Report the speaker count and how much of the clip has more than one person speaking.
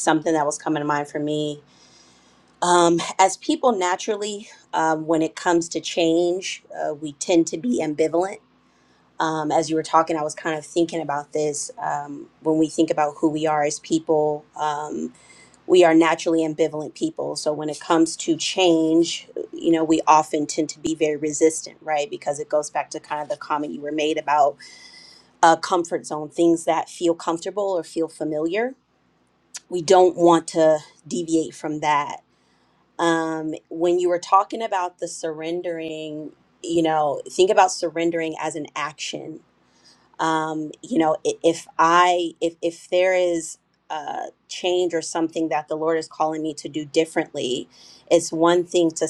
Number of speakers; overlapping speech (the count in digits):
1, no overlap